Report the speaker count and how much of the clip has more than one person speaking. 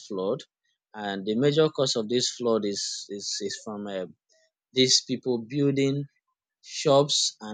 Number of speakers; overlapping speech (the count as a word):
one, no overlap